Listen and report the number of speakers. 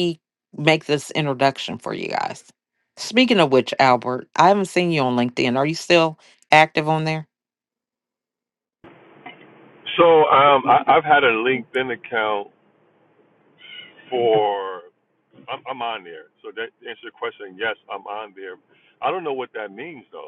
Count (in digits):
2